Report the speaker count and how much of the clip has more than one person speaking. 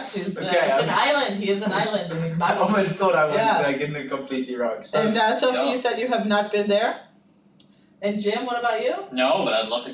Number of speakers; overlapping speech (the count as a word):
three, about 21%